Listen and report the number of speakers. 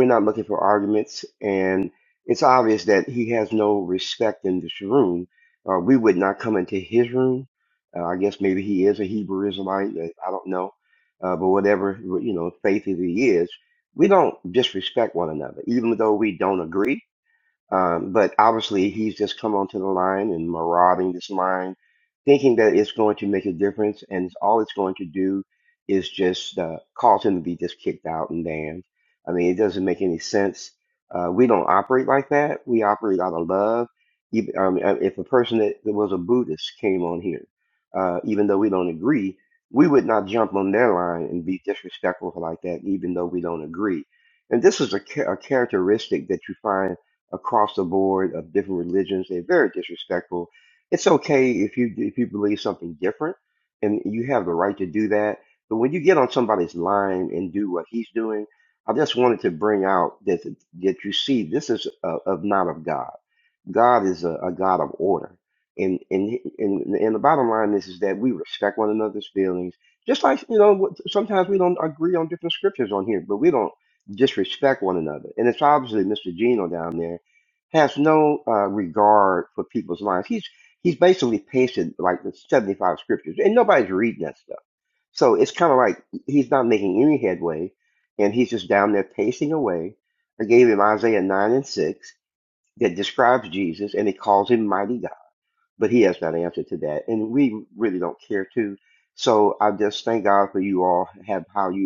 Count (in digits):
1